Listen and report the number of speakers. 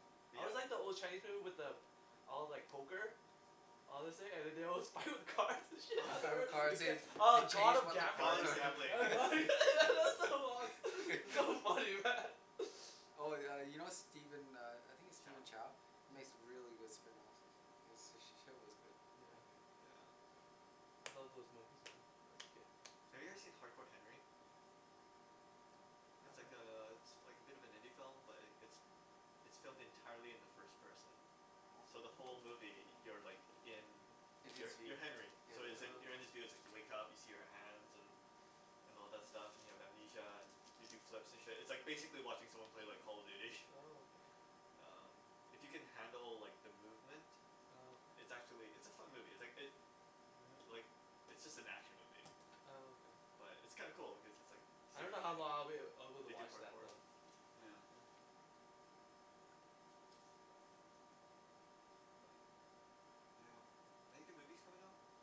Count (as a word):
three